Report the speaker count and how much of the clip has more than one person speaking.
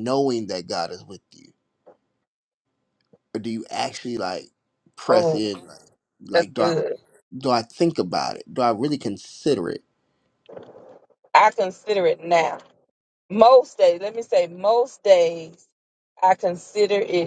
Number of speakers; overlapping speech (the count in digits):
2, about 5%